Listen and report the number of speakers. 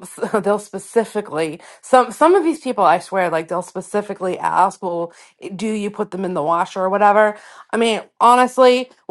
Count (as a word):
one